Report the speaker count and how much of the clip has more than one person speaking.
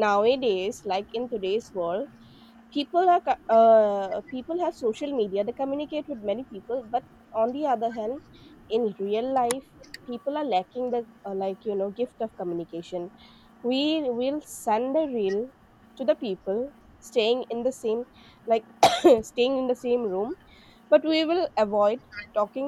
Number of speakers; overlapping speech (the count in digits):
1, no overlap